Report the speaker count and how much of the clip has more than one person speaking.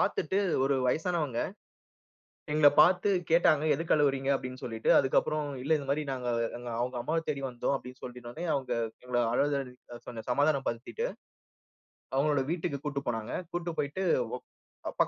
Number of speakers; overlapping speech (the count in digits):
1, no overlap